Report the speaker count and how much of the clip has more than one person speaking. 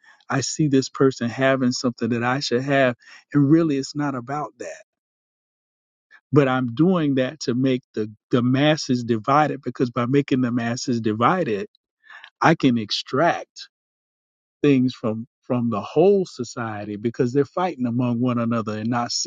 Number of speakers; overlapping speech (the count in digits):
1, no overlap